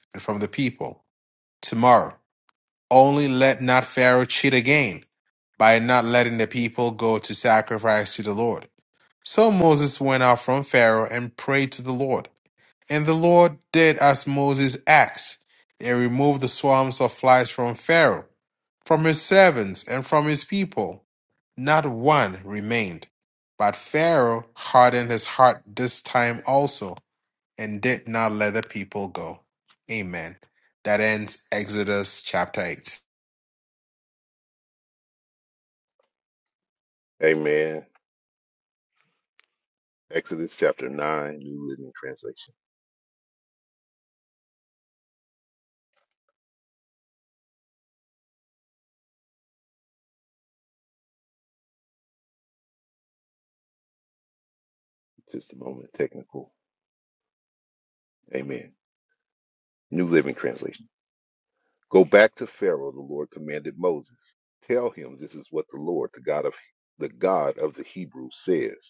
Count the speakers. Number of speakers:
two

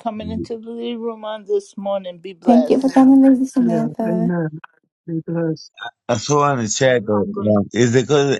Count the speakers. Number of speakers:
four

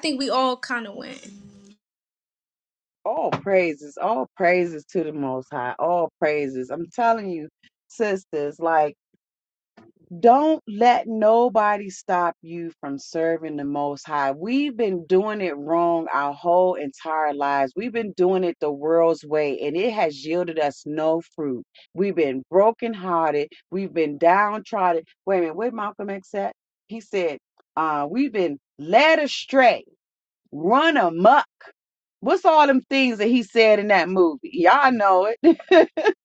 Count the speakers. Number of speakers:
two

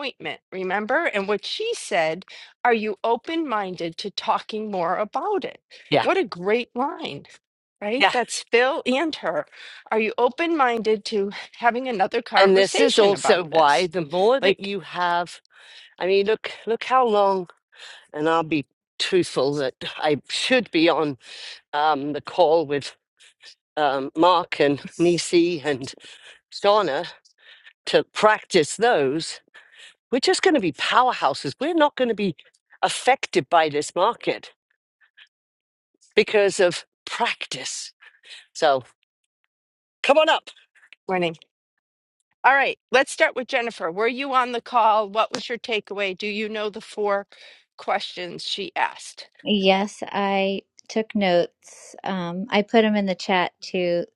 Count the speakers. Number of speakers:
three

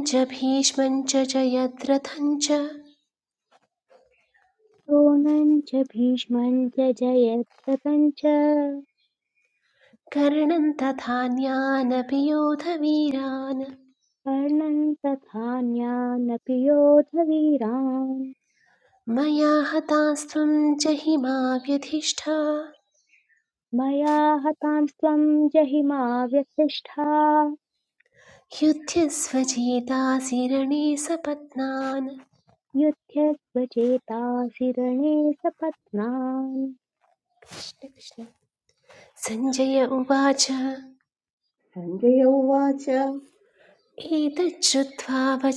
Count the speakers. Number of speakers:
three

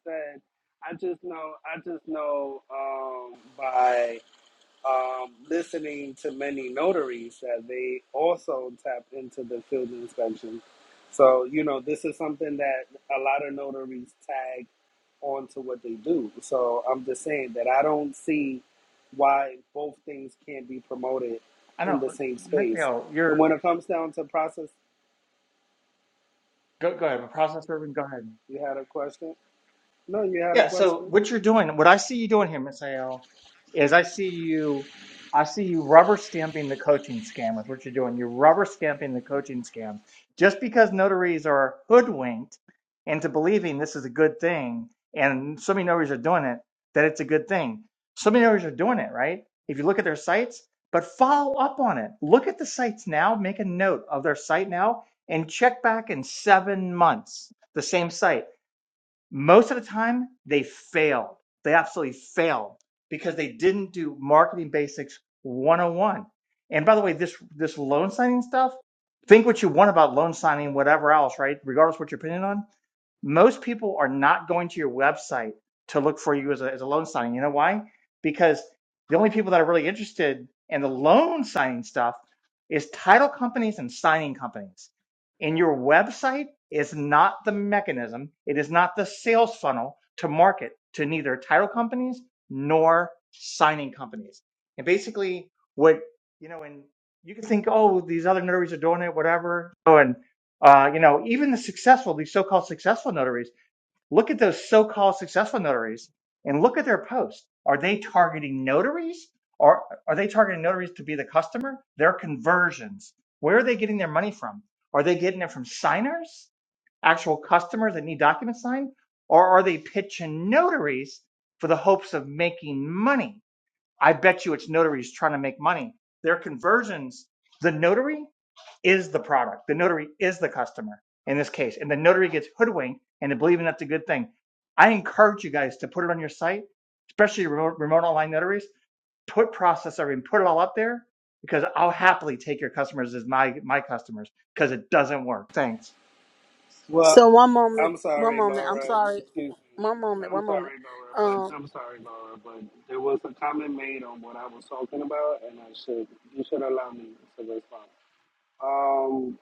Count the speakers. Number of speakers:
three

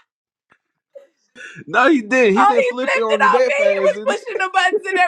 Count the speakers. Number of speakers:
two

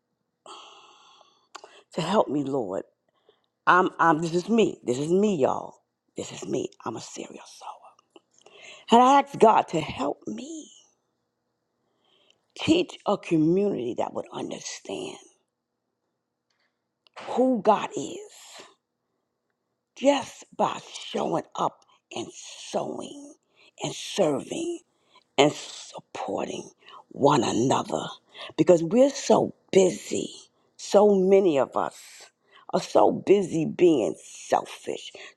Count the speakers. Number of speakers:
one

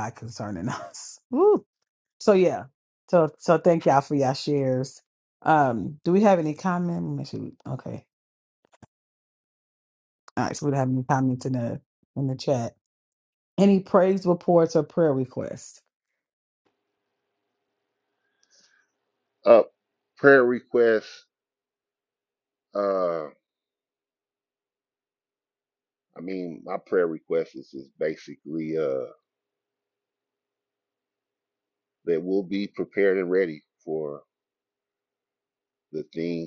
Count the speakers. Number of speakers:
two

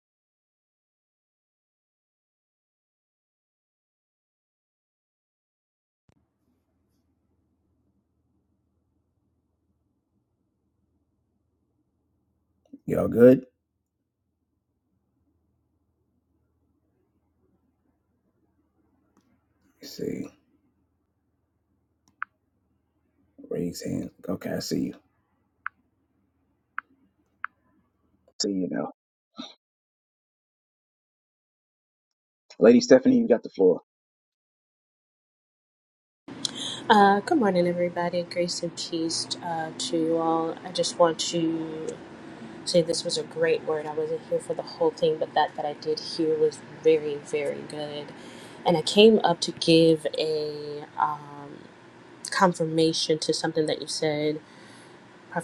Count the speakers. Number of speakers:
two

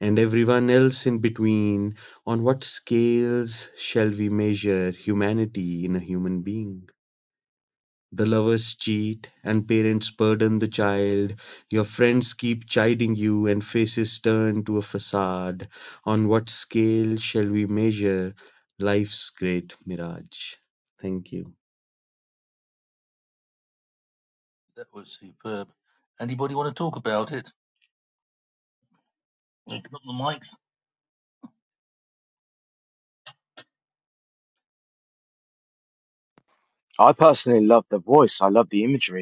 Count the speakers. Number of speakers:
three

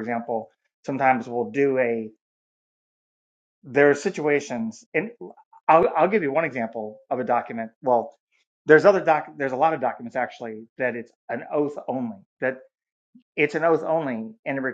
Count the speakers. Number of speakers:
one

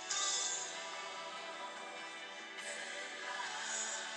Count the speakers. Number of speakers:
zero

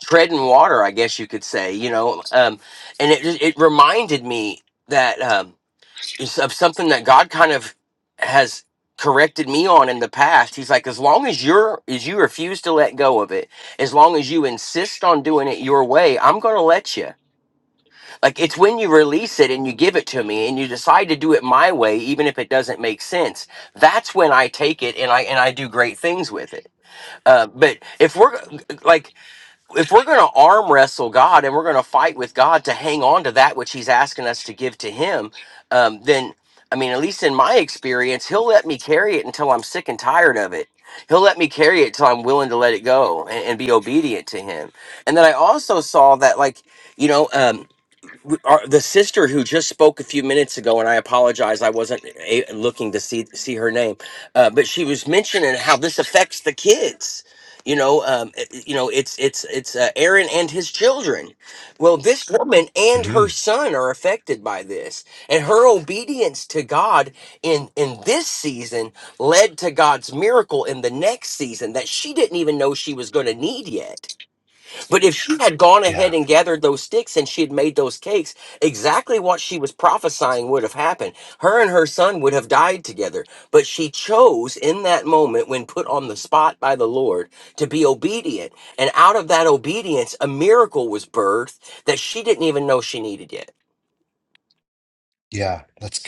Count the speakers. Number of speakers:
two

